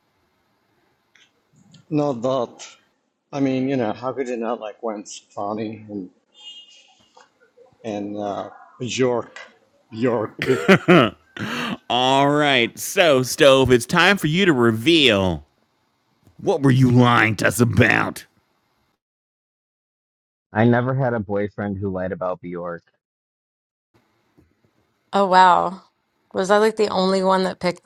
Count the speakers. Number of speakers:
four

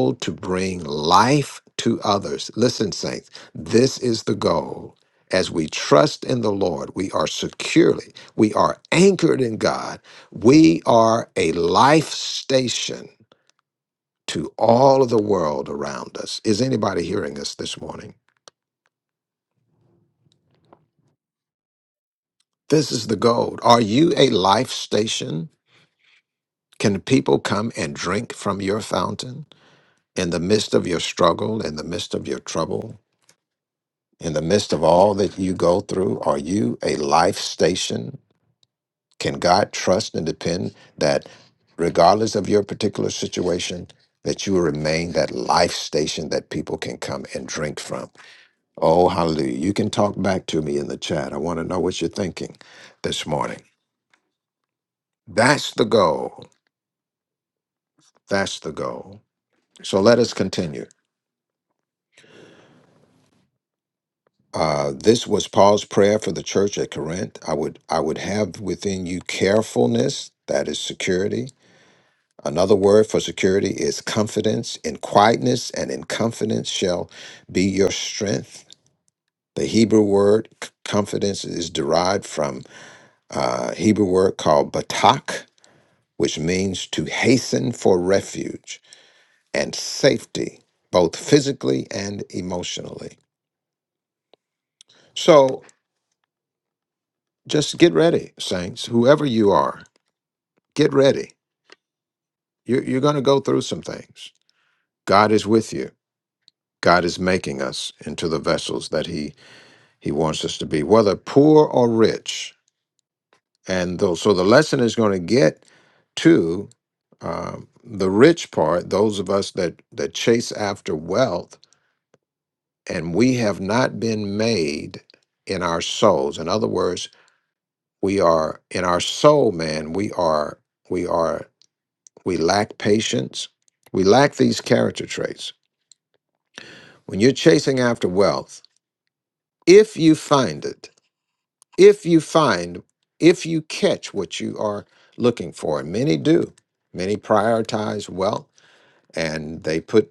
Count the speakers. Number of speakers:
one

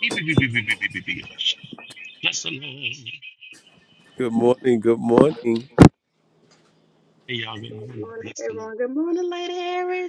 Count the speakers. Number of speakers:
three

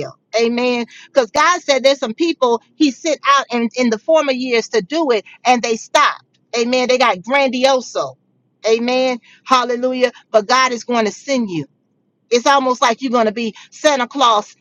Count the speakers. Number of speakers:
one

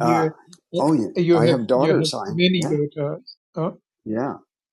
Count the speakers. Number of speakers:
two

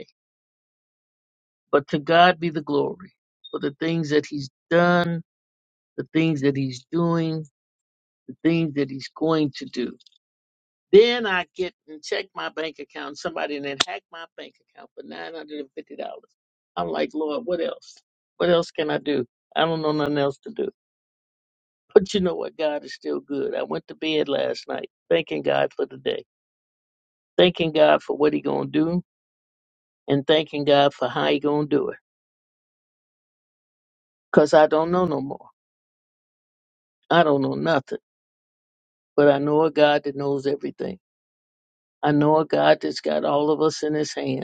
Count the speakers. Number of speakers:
one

